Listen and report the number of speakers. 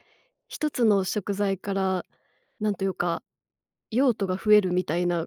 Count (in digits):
1